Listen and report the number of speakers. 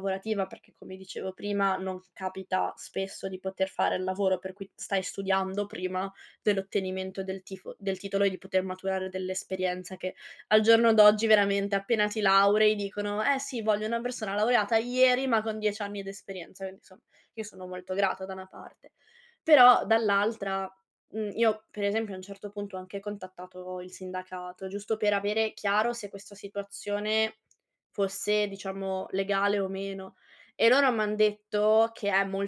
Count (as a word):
one